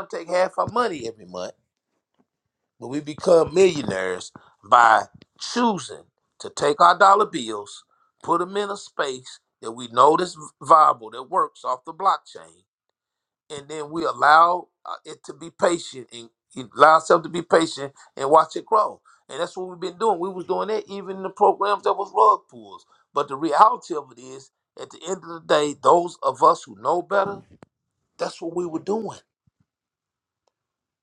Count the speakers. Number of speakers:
one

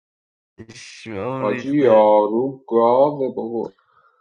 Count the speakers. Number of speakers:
two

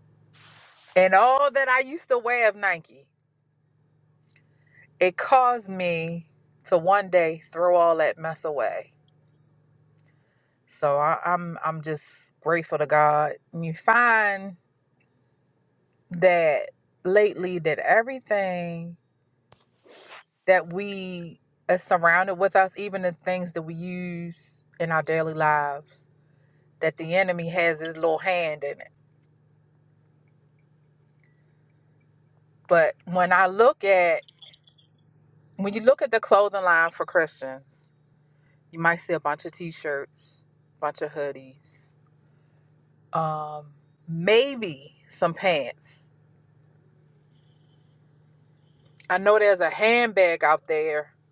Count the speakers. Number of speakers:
one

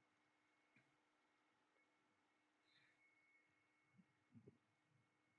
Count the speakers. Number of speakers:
zero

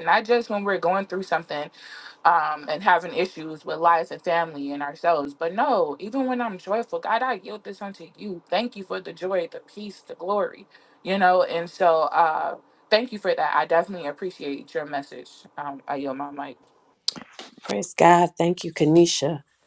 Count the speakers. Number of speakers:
two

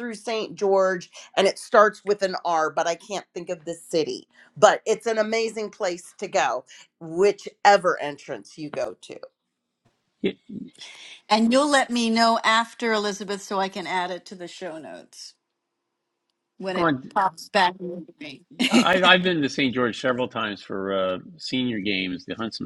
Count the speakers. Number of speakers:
three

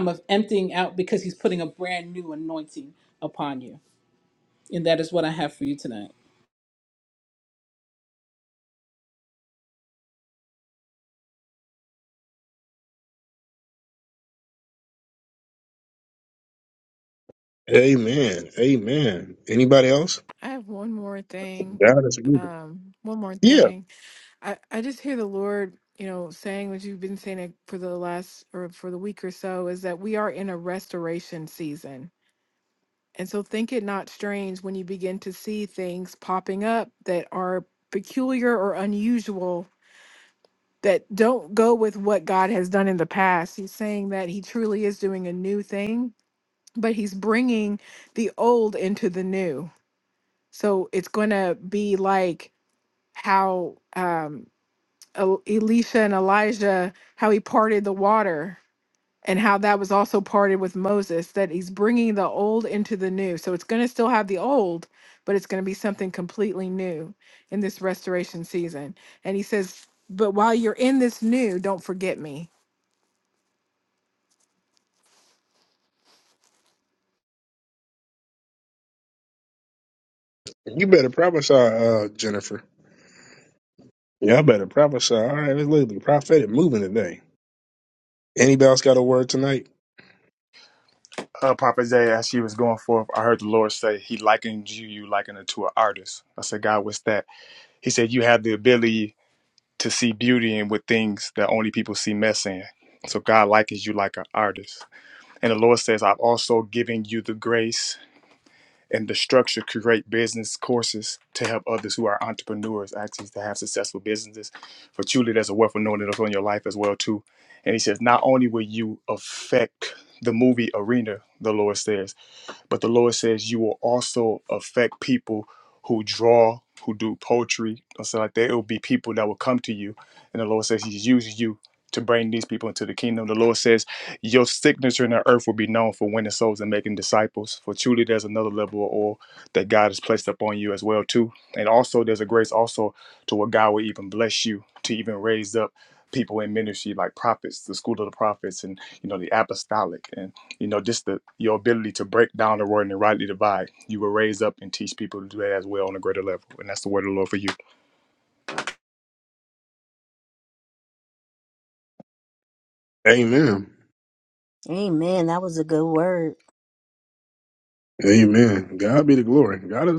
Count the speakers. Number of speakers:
five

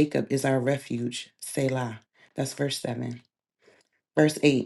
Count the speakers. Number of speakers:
one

